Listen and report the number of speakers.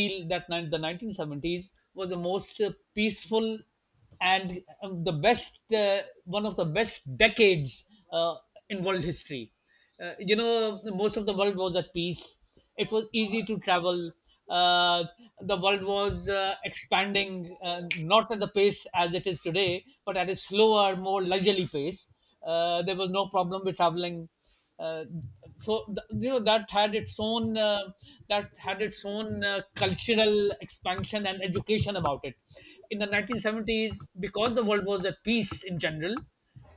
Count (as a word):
one